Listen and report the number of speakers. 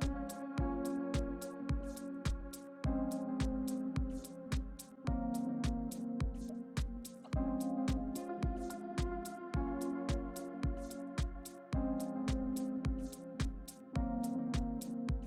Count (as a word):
zero